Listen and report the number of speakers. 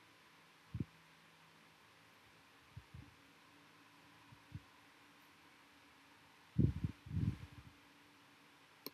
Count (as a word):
zero